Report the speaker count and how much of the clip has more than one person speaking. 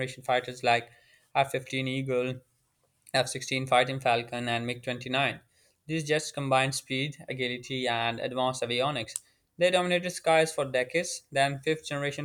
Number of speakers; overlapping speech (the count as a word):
one, no overlap